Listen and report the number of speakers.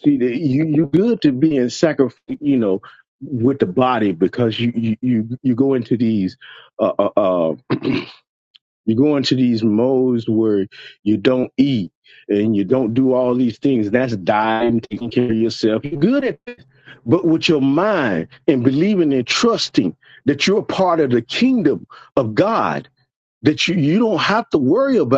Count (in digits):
1